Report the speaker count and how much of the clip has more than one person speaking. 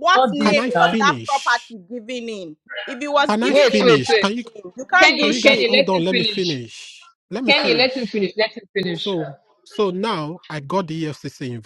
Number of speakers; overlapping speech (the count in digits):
3, about 43%